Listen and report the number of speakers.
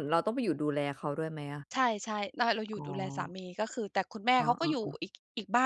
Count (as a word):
two